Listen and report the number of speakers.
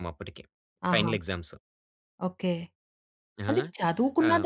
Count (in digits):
2